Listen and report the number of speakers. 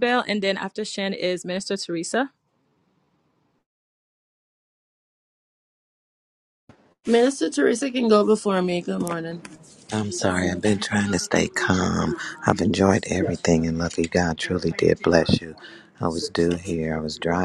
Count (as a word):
three